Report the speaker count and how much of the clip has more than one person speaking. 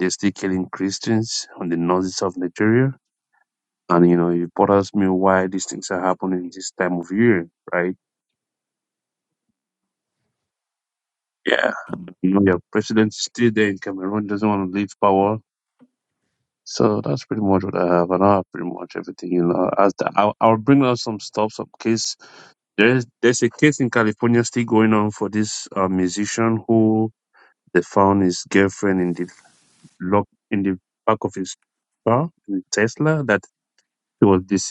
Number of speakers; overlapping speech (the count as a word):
one, no overlap